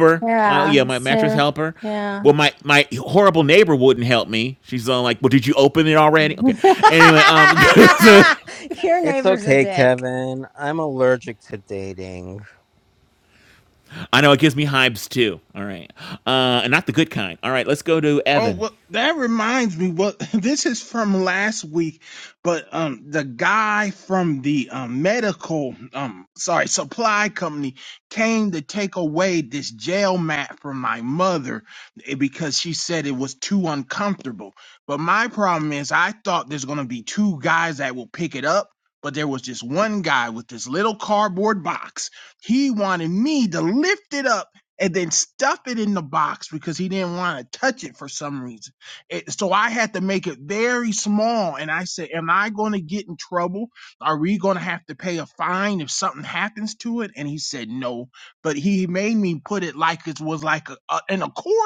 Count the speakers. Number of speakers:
4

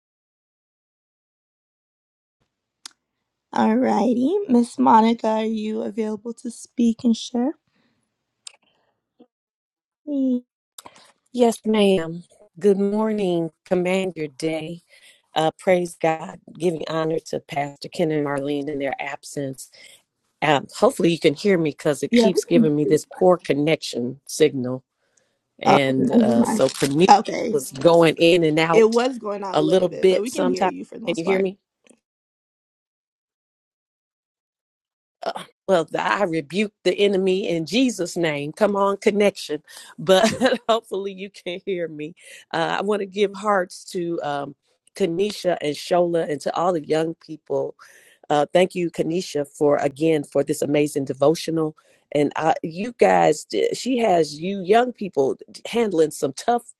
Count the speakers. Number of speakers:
2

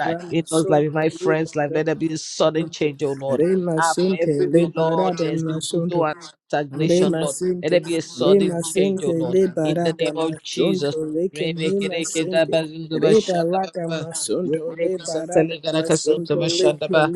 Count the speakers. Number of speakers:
2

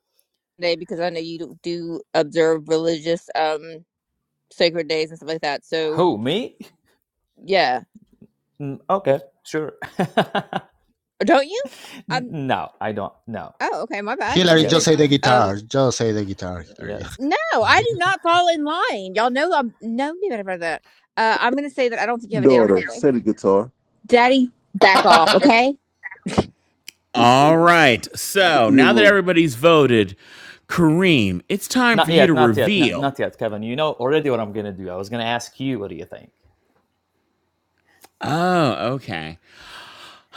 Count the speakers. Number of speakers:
5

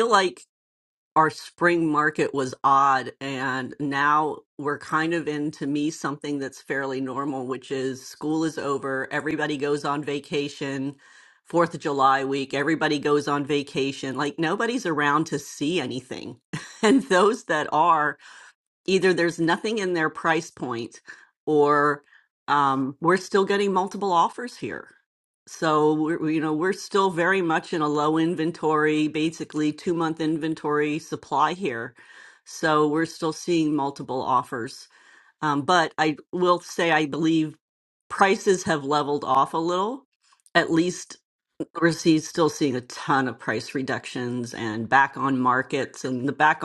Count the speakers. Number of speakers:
1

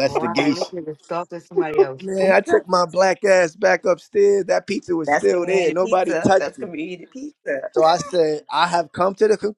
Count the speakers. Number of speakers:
3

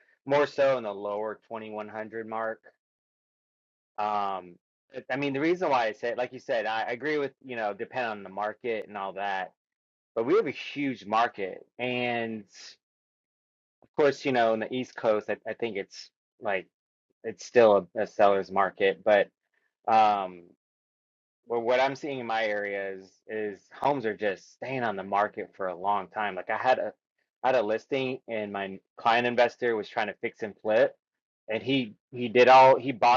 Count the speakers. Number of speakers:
1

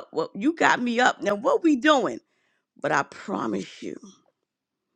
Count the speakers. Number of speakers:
1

